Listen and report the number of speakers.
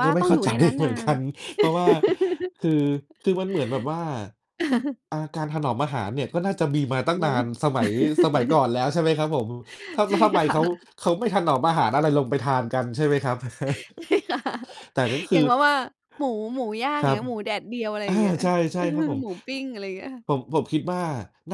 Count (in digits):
2